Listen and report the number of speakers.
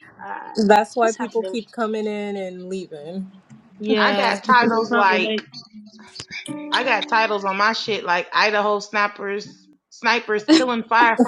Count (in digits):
3